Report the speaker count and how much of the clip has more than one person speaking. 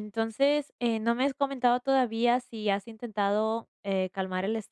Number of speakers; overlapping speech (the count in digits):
1, no overlap